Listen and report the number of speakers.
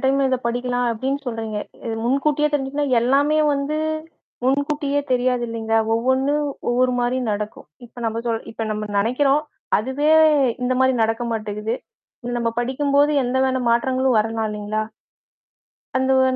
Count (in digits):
1